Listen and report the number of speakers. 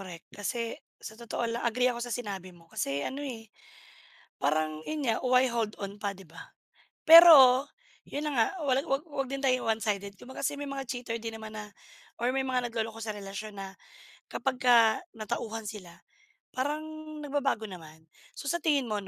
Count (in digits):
1